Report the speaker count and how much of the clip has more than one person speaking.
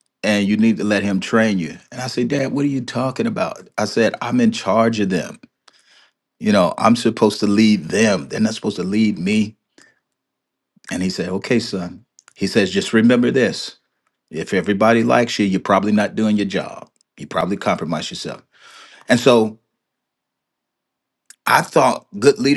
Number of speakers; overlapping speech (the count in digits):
1, no overlap